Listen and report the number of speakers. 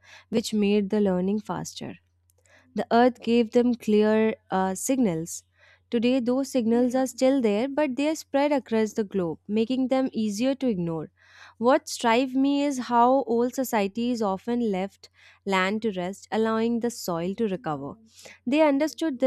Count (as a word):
one